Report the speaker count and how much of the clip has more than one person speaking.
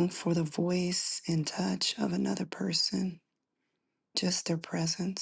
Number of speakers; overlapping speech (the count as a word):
one, no overlap